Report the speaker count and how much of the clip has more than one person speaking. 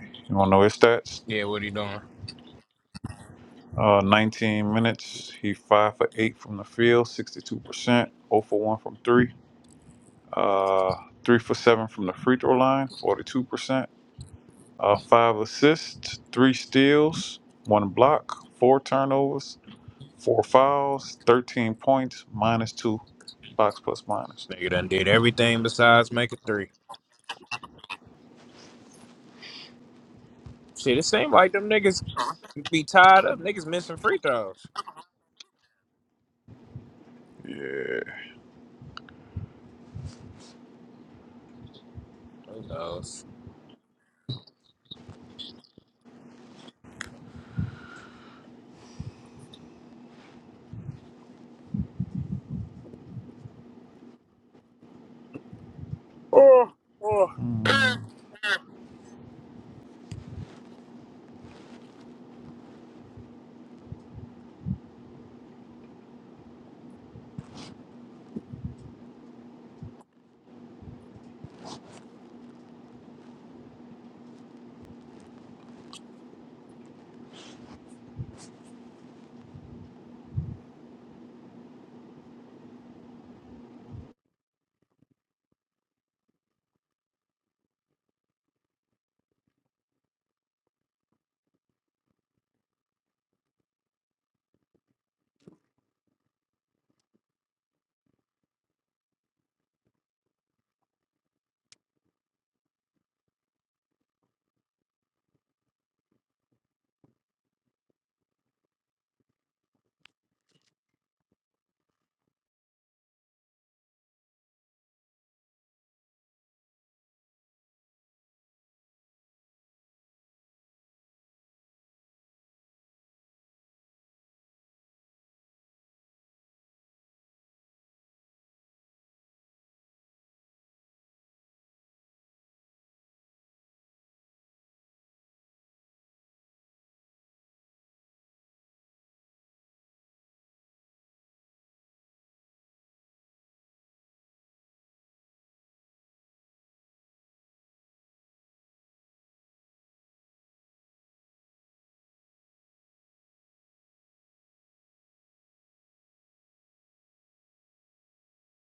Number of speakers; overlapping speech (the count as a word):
two, no overlap